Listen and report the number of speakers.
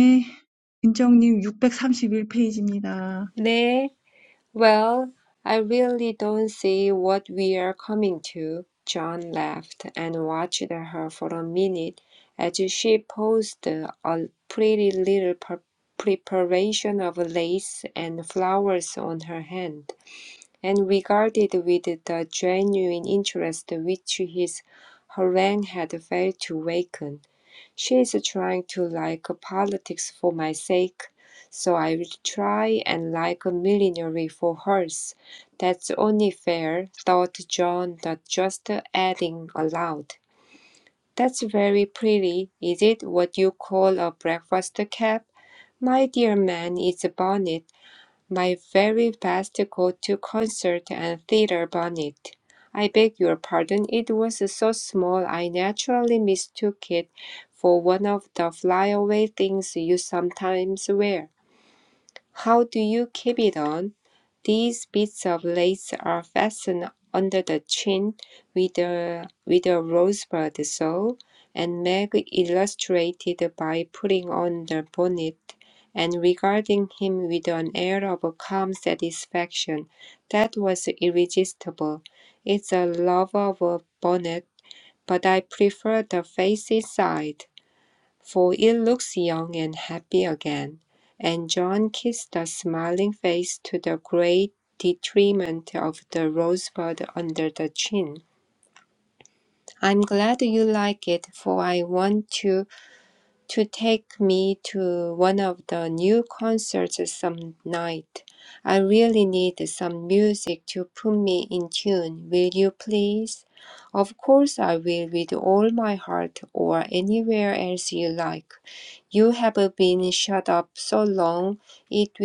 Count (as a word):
two